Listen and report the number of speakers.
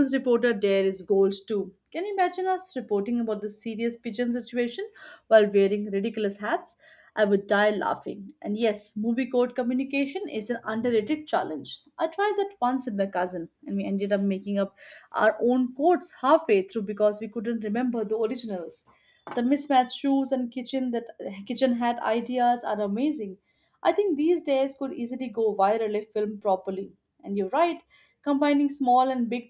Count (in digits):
1